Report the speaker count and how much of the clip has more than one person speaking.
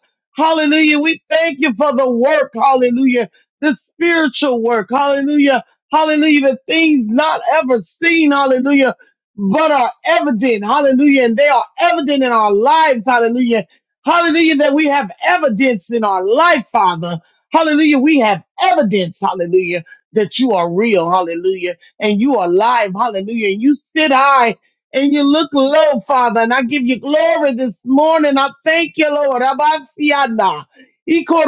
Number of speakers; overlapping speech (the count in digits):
1, no overlap